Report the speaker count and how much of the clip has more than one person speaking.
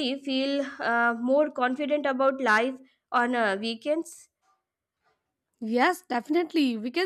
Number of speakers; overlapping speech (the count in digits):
2, no overlap